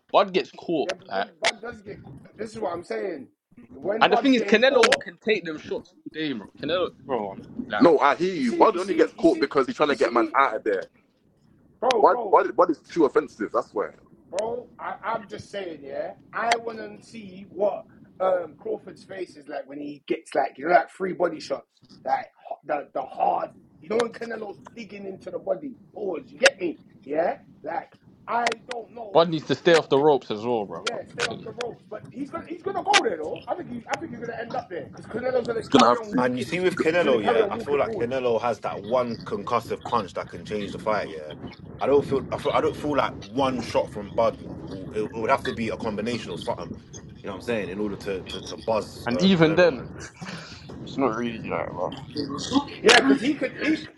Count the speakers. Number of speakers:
4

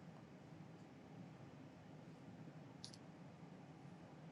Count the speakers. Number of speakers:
0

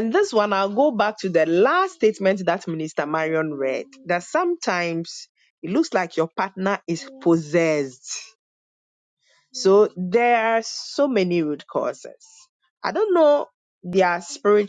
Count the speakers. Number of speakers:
1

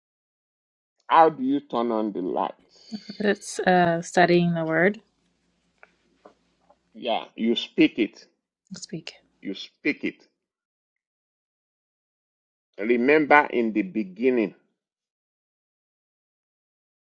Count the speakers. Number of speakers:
2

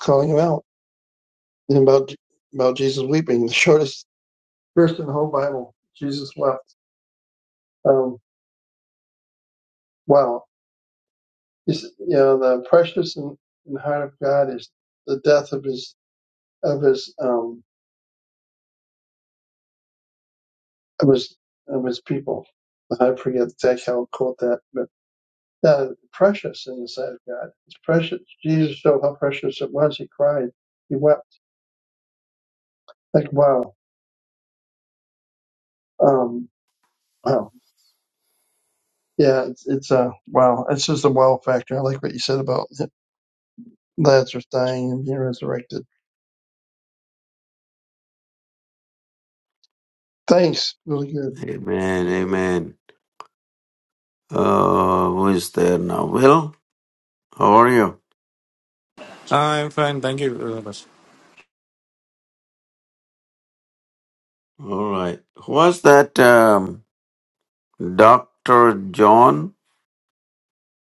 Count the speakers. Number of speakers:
3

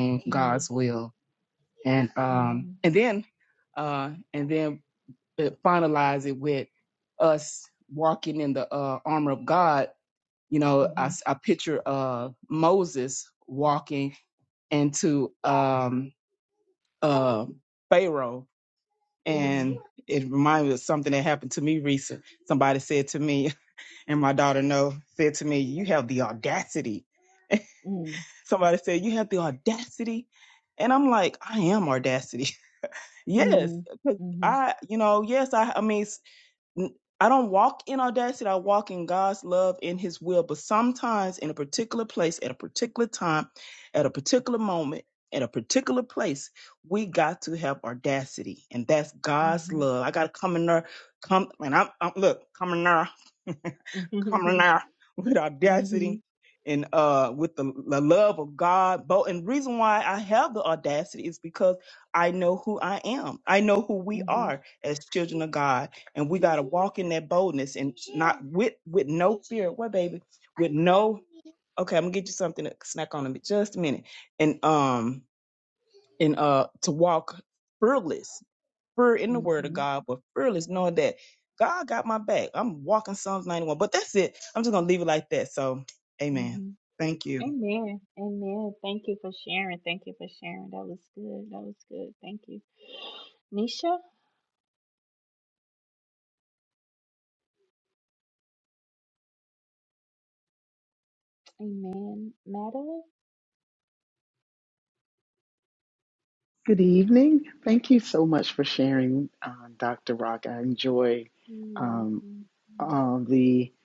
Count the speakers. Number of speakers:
3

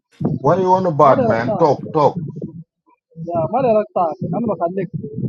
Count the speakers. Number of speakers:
2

